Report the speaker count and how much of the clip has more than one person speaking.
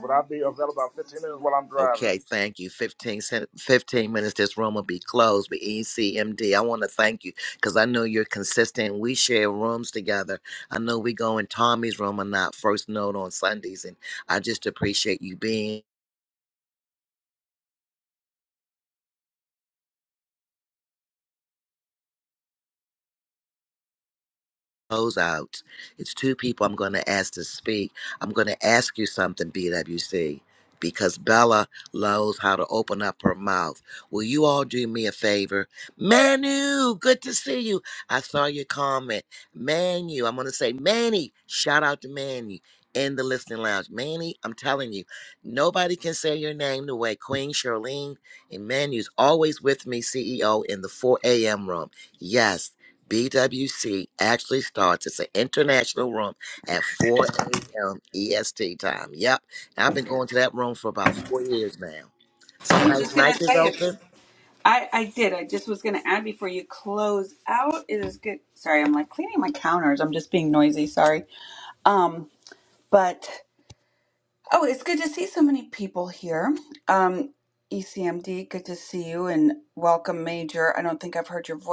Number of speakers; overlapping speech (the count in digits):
3, about 2%